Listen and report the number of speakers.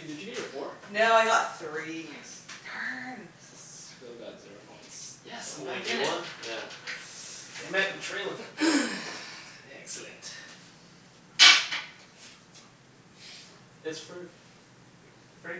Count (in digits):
3